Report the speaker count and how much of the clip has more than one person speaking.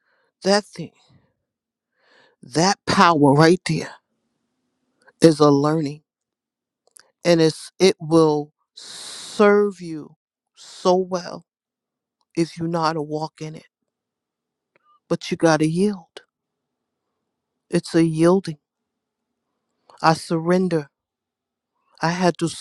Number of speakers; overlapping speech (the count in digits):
1, no overlap